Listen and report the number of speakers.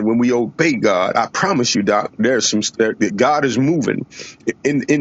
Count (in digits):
1